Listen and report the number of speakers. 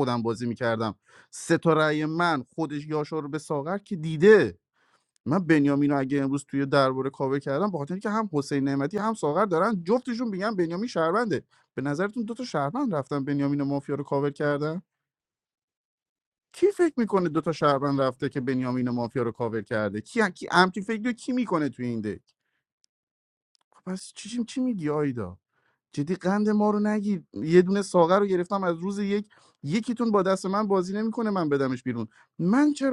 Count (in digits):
1